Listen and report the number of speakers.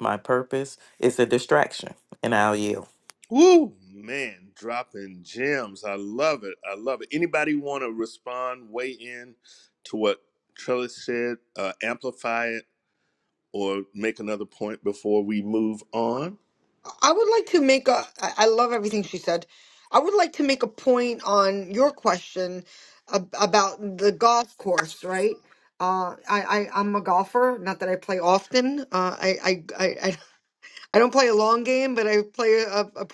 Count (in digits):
3